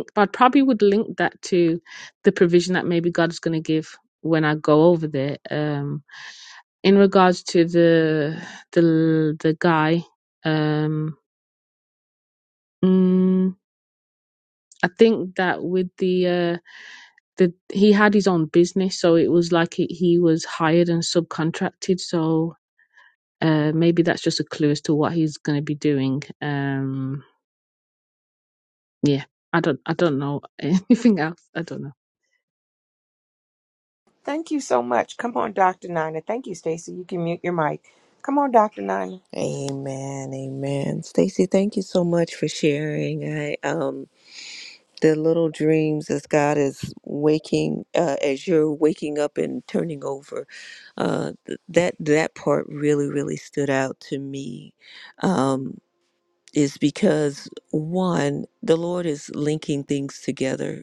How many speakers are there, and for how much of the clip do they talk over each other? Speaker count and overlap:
3, no overlap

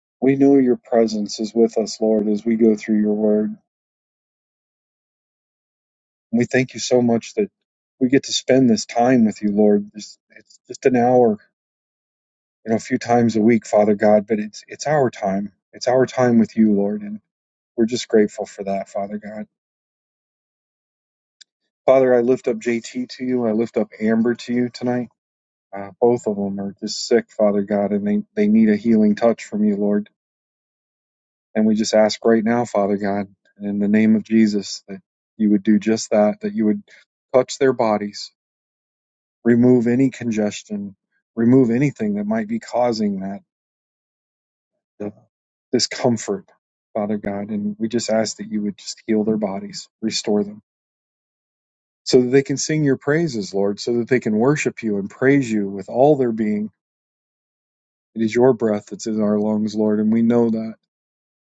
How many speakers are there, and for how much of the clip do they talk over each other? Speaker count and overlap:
1, no overlap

